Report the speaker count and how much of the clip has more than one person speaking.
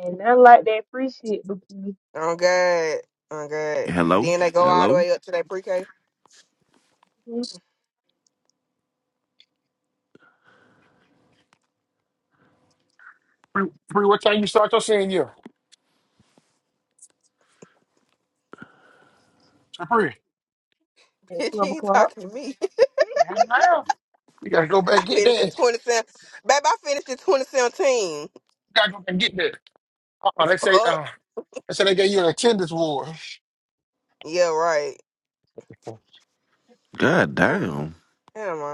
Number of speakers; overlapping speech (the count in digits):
4, about 7%